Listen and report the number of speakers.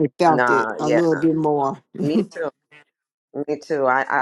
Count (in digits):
2